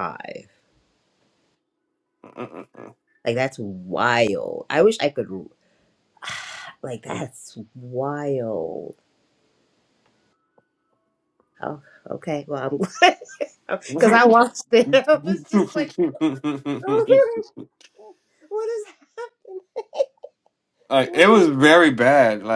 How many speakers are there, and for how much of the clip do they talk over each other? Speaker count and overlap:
two, about 2%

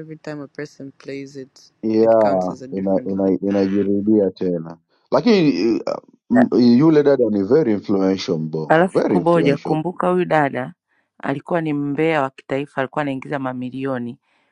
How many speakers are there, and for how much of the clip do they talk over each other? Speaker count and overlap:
three, about 16%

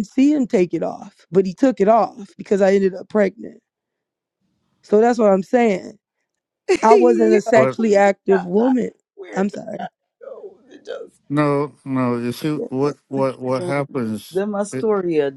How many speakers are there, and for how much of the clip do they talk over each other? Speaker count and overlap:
three, about 18%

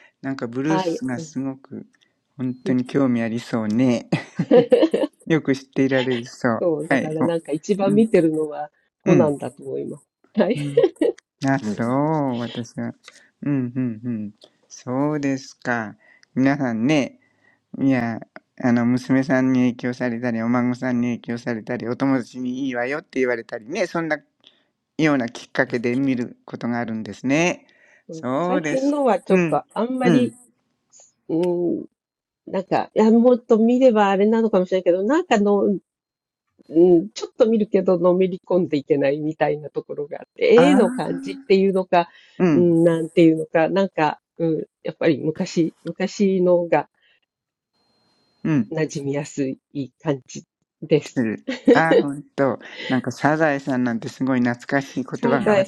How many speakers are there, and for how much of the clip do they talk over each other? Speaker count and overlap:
two, about 7%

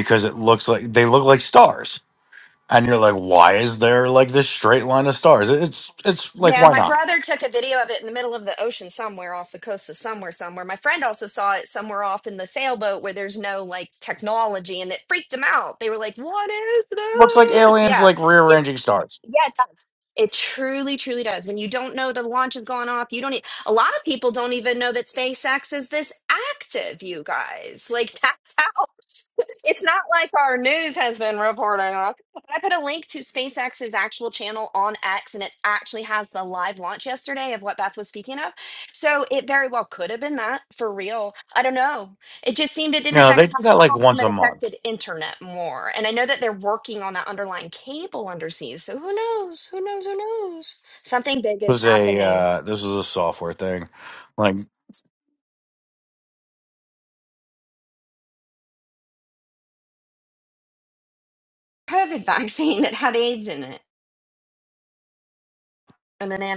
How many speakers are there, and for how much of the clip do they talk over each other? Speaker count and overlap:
two, about 6%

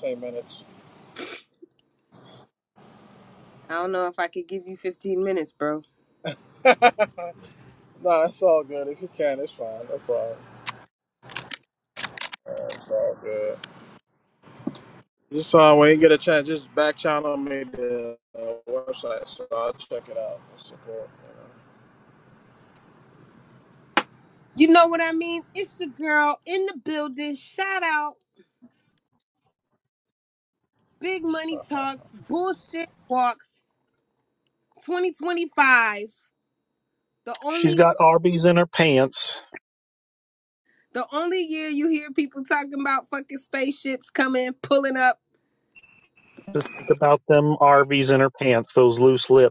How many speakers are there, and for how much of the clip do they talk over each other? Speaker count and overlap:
three, about 1%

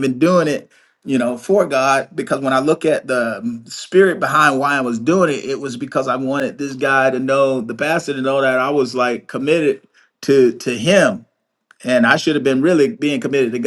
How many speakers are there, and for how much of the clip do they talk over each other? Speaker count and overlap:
one, no overlap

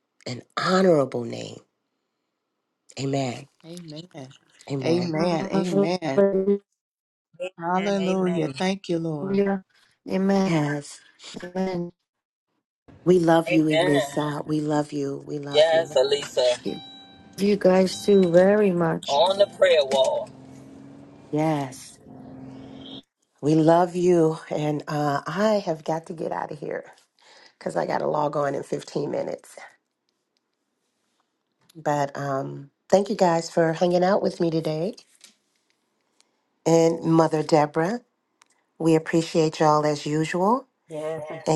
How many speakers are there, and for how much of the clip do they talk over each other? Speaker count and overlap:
five, about 8%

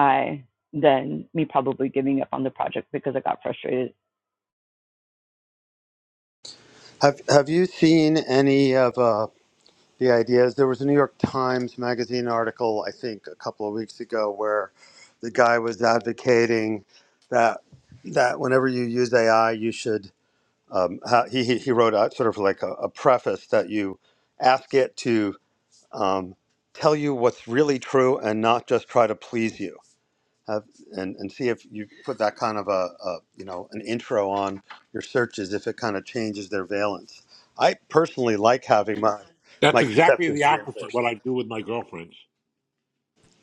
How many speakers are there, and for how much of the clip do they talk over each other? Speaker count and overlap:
three, about 3%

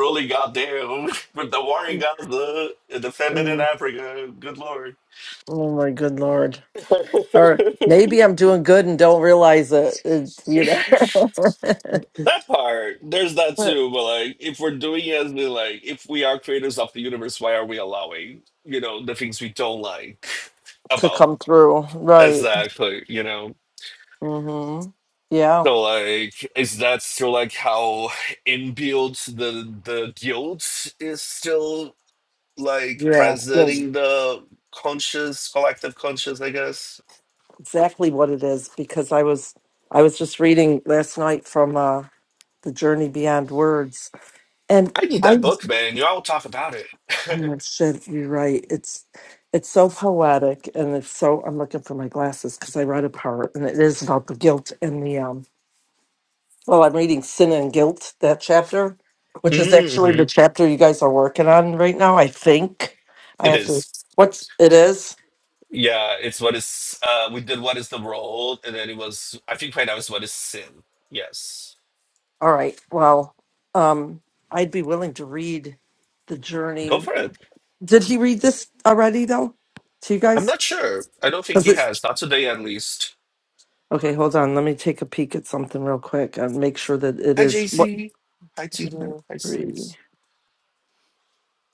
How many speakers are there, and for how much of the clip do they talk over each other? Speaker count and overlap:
two, about 6%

